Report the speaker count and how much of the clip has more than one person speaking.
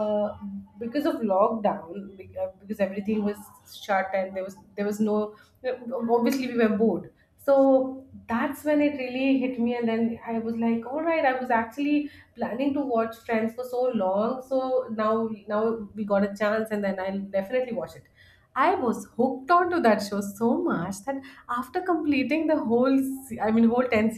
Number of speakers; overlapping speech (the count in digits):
1, no overlap